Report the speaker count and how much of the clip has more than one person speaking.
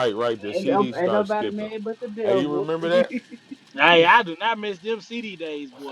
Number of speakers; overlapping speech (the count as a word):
three, about 28%